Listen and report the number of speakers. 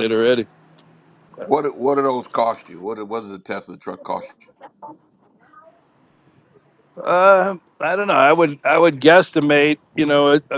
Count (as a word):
two